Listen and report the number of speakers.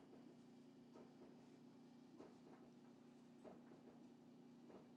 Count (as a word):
zero